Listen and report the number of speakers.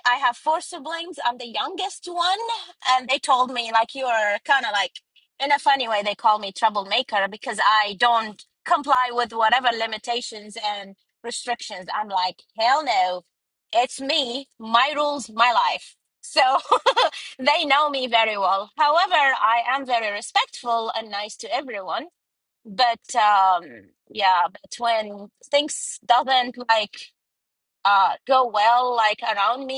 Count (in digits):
1